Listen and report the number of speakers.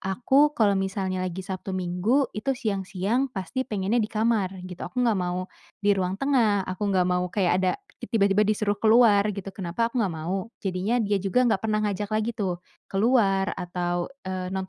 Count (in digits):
1